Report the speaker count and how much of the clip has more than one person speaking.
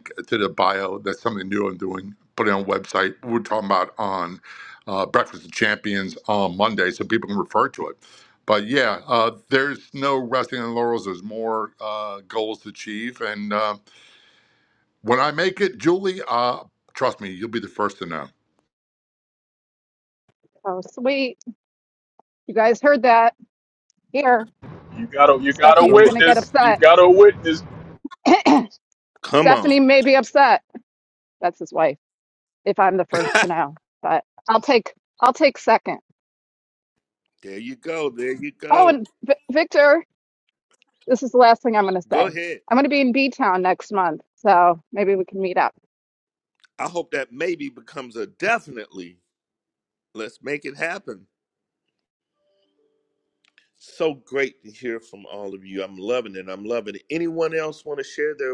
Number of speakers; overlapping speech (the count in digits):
4, about 3%